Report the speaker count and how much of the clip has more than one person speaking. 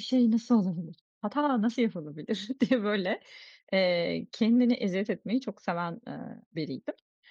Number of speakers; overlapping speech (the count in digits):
1, no overlap